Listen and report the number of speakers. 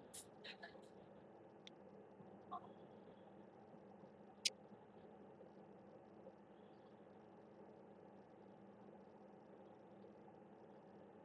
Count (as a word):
zero